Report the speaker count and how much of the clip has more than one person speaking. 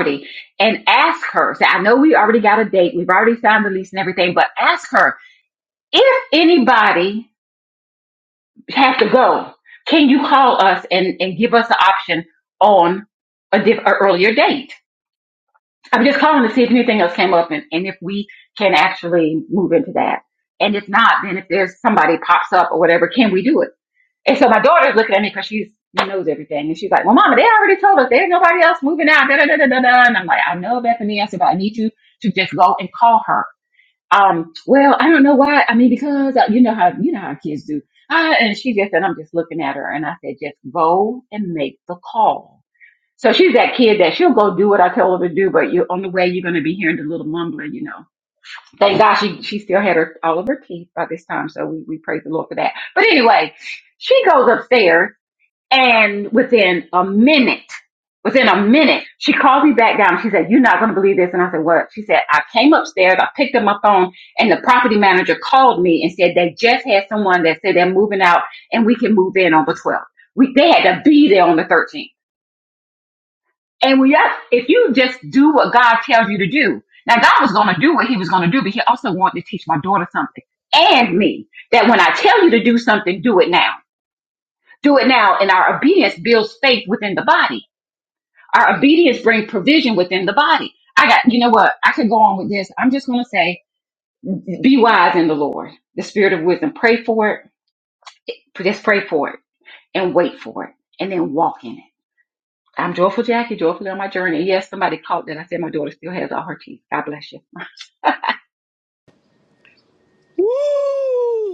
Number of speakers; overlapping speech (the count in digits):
2, no overlap